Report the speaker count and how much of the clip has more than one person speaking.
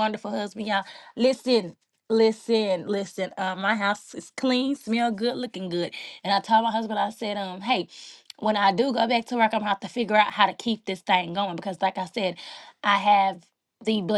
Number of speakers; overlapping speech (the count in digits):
1, no overlap